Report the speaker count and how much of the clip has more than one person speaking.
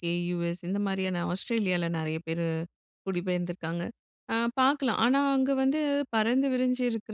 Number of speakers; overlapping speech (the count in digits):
1, no overlap